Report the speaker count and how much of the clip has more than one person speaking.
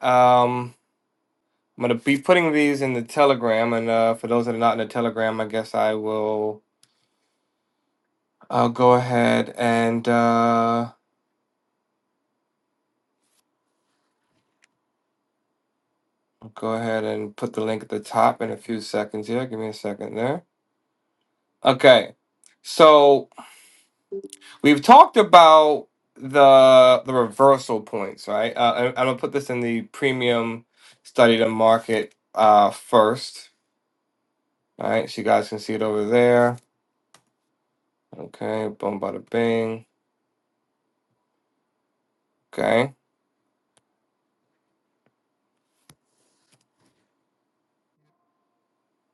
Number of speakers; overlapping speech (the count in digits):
1, no overlap